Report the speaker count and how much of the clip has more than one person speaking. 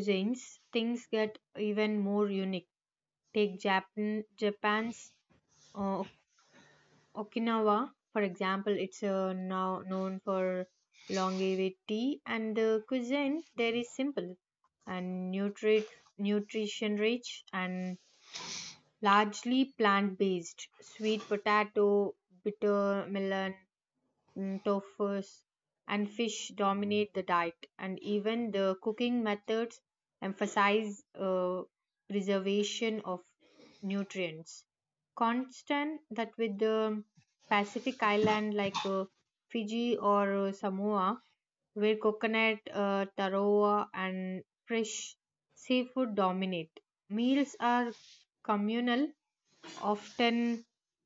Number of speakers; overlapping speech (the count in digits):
1, no overlap